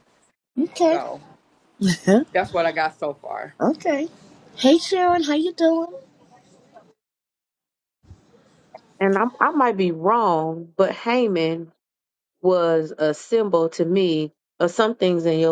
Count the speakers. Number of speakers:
3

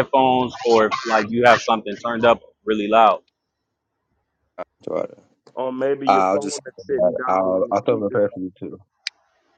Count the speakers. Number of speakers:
3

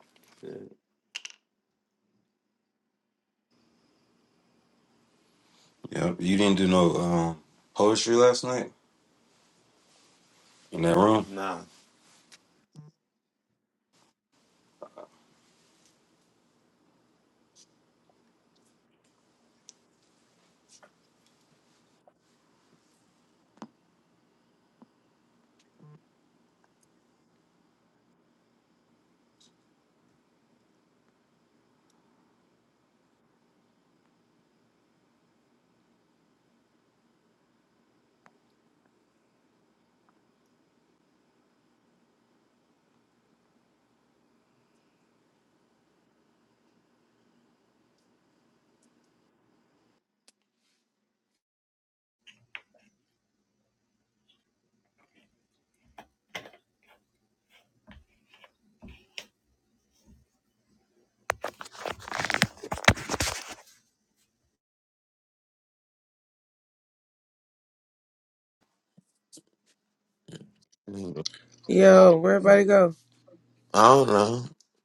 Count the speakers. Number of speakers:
3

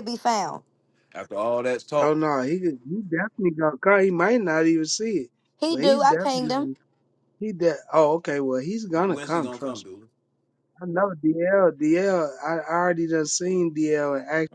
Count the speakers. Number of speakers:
3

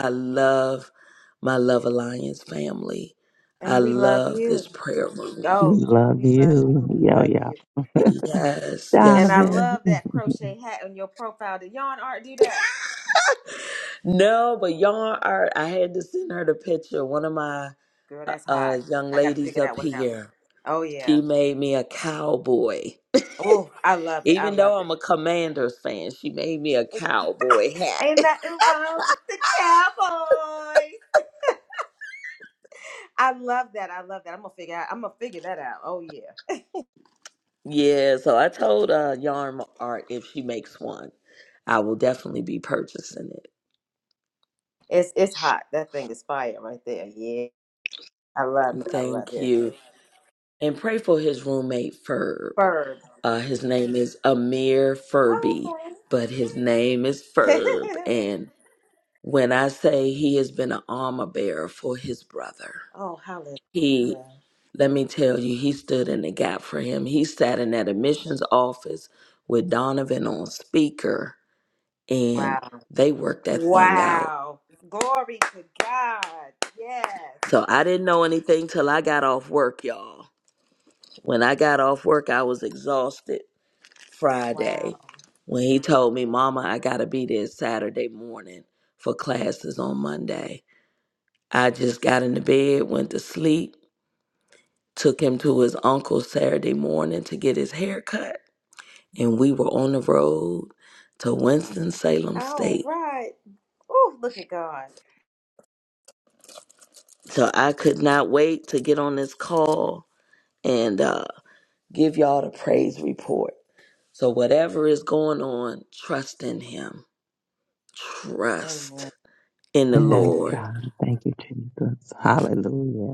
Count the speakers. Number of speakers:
3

